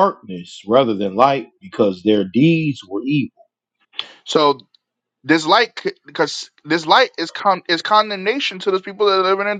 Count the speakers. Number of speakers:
two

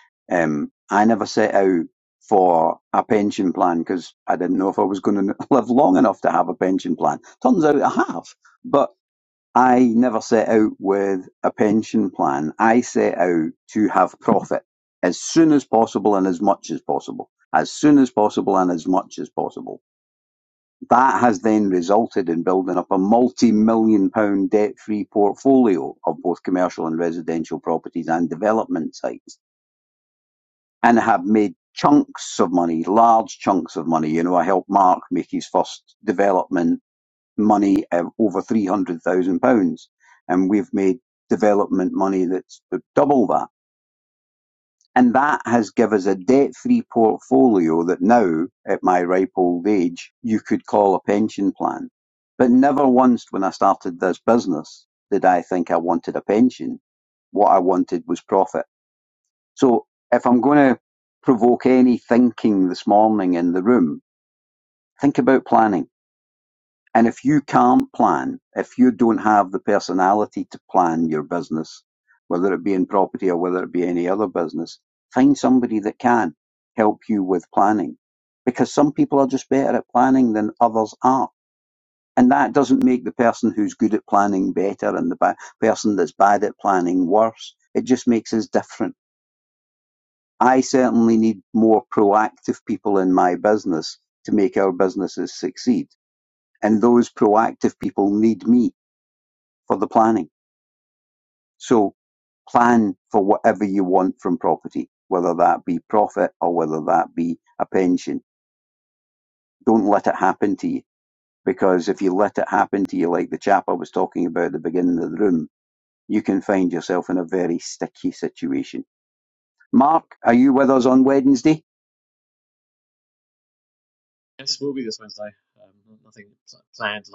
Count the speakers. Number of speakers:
two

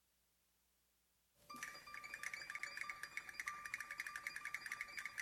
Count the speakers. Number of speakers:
zero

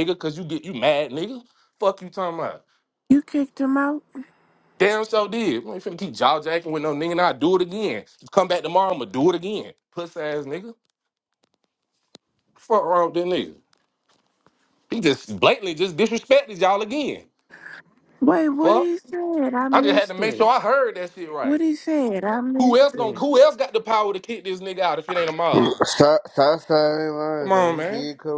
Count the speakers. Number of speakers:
three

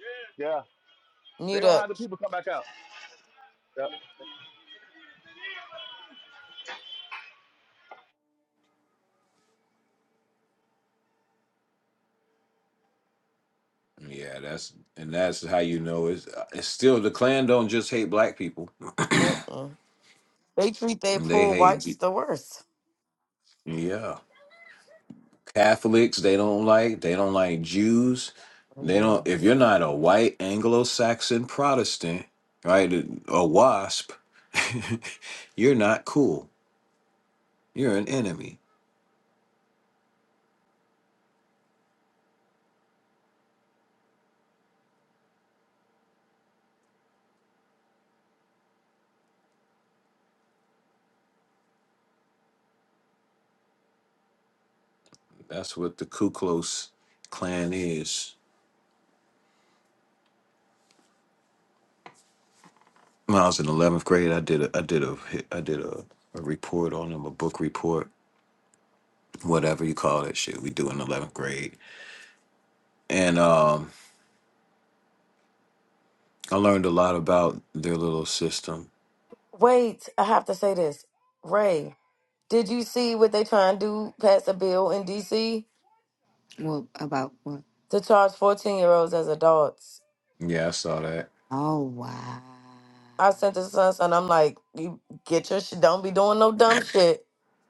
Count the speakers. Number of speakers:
four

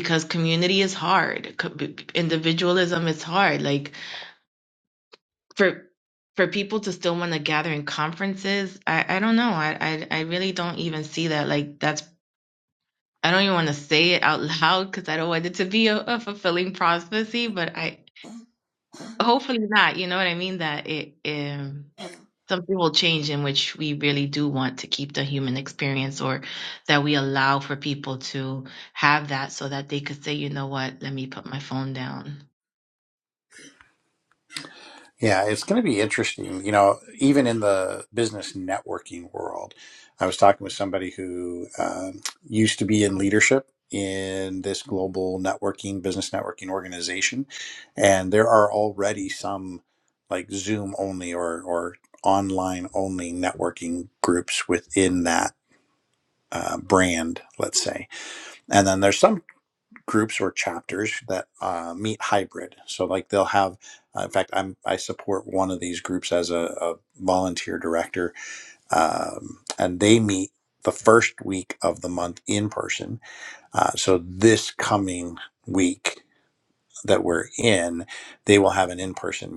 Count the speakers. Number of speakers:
two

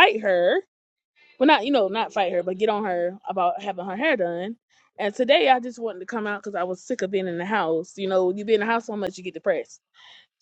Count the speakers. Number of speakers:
one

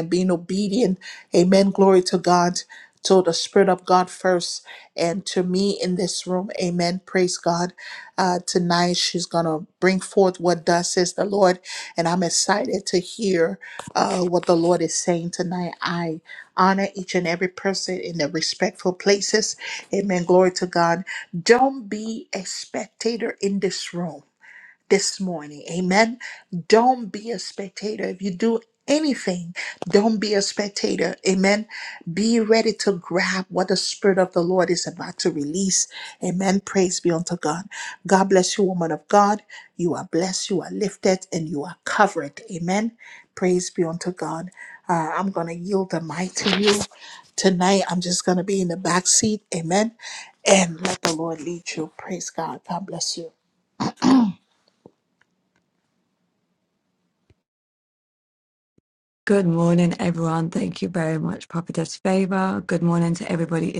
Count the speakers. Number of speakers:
two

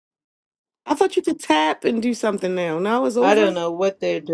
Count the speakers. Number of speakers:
two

